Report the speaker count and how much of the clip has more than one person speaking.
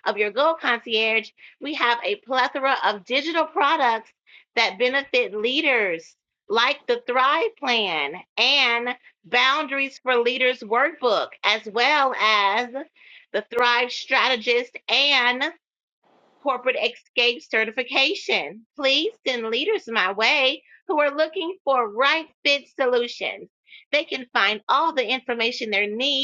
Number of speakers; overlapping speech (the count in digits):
1, no overlap